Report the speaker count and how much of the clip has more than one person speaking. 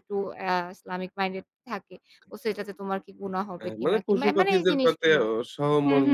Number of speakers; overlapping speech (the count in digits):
2, about 32%